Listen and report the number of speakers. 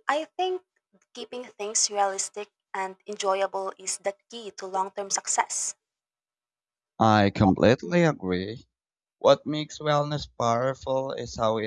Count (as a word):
two